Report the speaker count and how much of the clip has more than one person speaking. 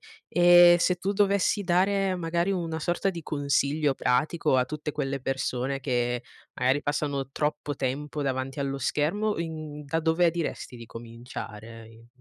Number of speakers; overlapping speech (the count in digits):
1, no overlap